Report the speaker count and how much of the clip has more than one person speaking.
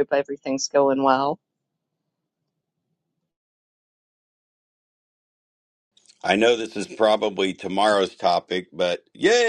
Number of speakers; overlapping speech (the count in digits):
2, no overlap